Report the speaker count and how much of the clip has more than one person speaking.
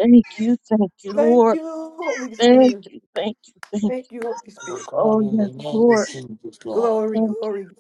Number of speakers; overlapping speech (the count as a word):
three, about 37%